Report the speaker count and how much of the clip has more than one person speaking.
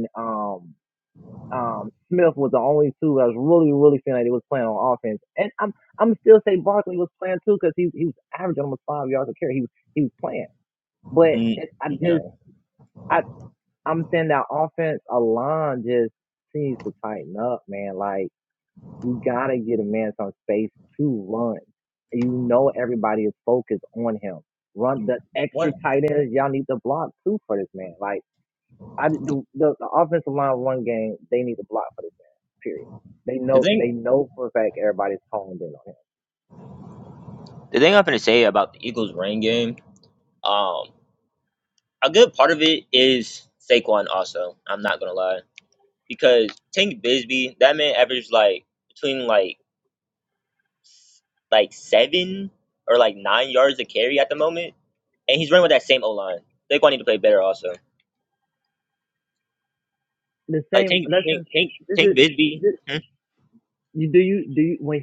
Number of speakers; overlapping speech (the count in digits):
2, about 3%